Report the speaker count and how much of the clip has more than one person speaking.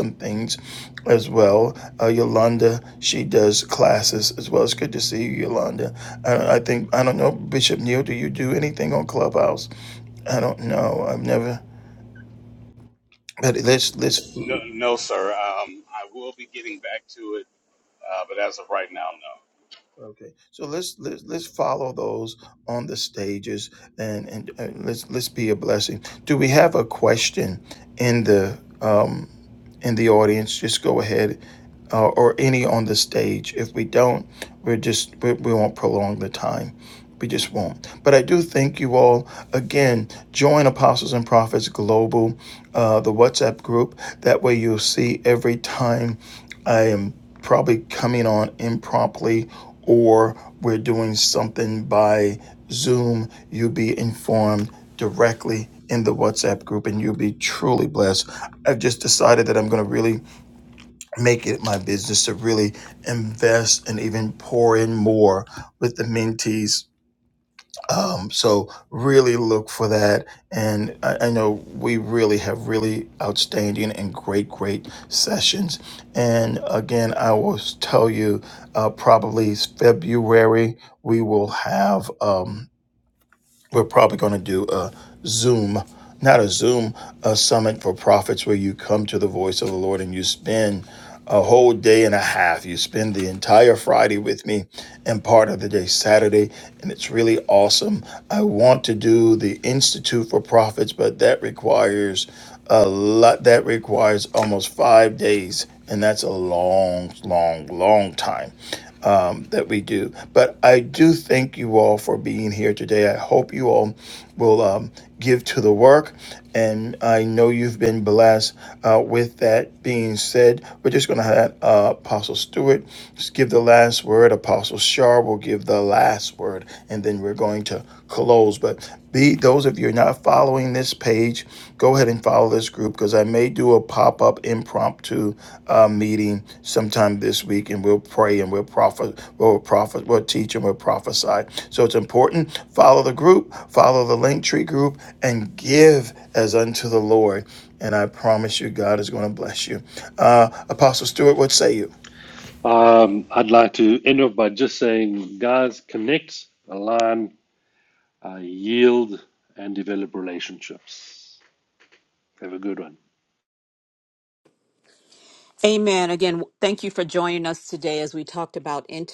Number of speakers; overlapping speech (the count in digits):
4, no overlap